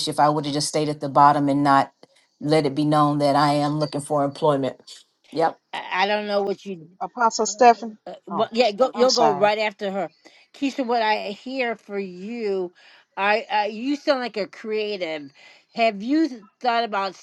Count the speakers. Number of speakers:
3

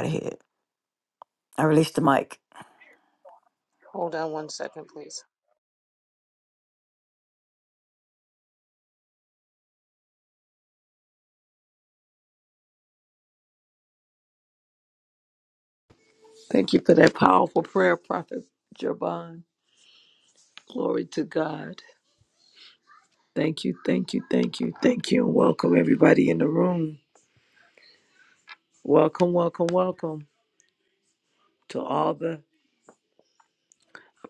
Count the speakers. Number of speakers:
3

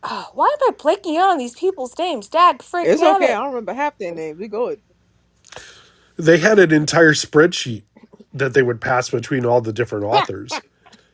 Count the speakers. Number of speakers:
3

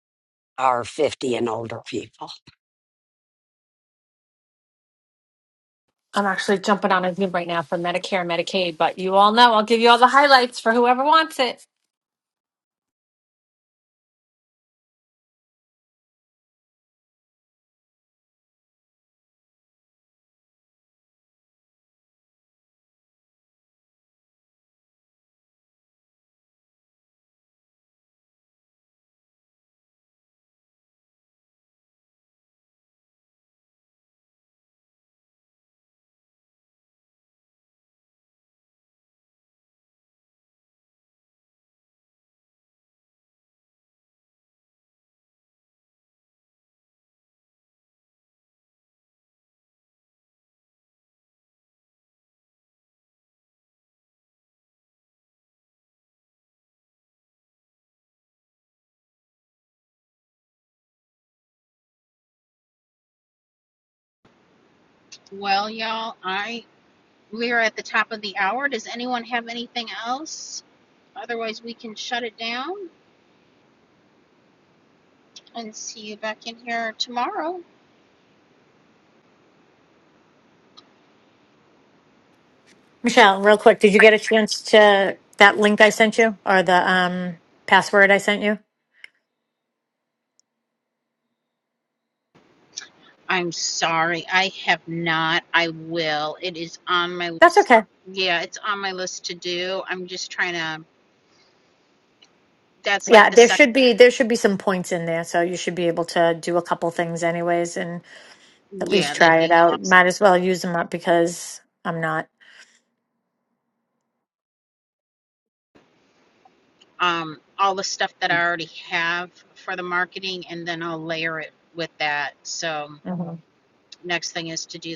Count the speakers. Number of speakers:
4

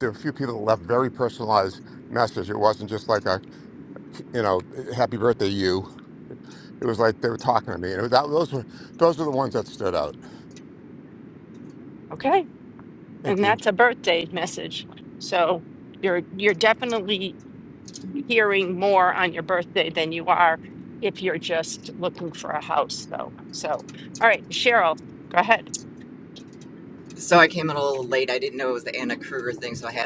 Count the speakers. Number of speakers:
3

